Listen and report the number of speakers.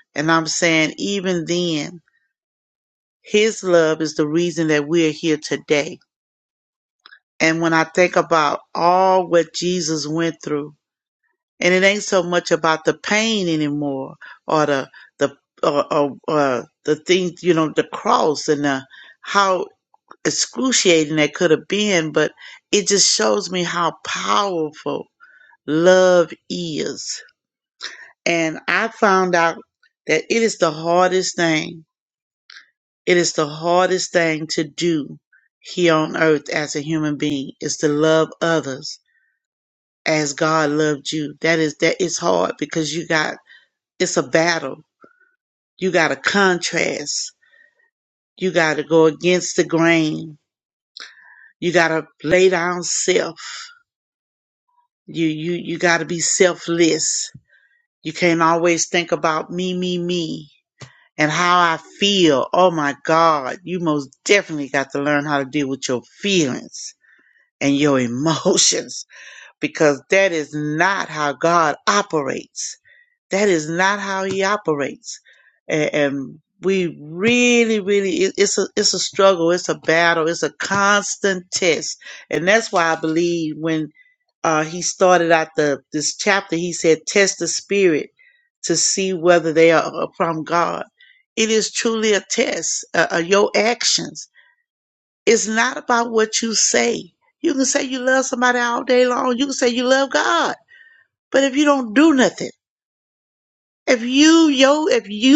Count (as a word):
one